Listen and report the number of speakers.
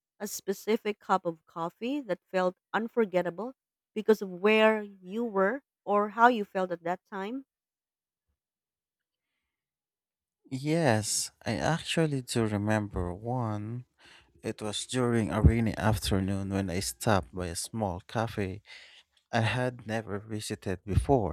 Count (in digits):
2